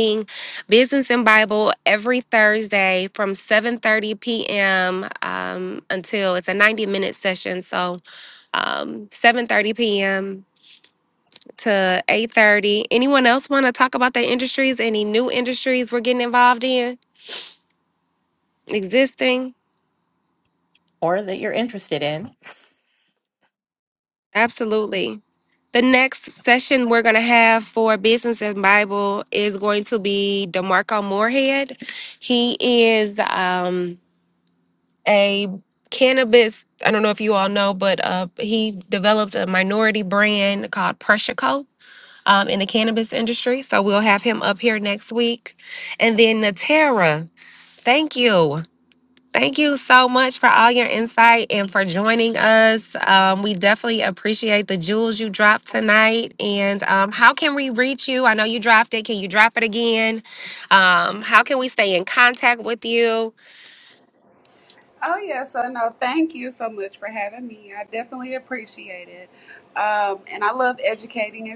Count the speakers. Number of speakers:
3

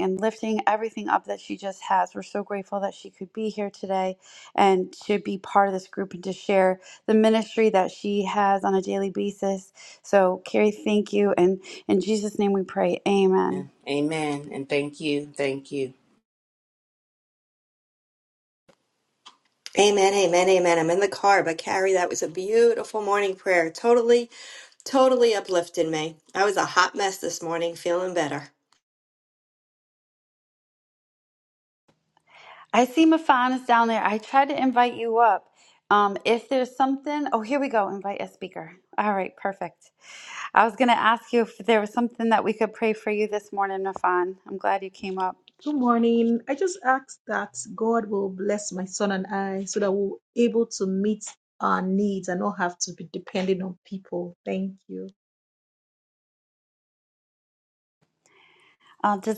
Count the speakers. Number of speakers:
4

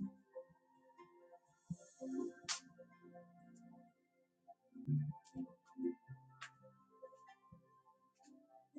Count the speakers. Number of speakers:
0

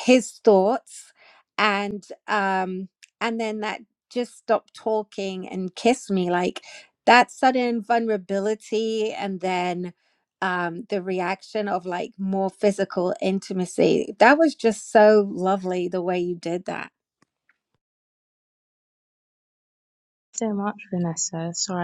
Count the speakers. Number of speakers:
2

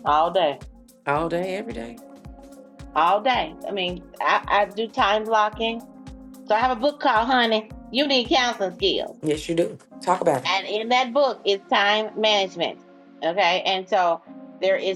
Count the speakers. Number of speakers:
2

